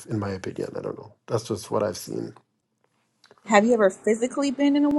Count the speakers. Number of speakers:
two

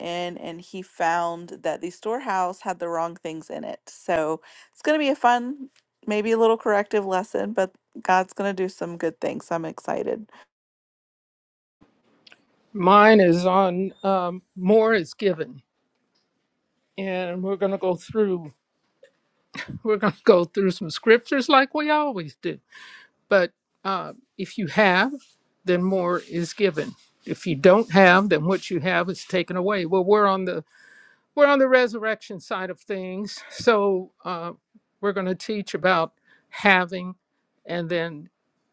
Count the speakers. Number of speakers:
two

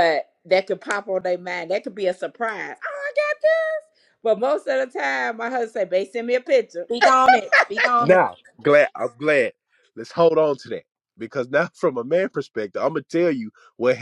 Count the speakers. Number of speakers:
three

